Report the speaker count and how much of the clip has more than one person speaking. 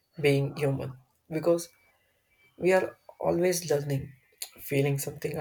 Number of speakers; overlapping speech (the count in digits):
1, no overlap